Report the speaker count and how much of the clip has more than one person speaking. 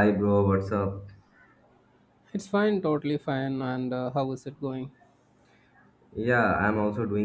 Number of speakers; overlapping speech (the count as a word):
two, no overlap